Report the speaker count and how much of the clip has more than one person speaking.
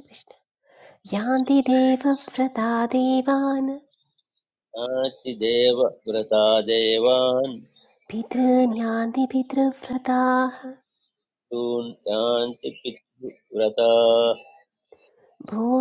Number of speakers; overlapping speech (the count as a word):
two, no overlap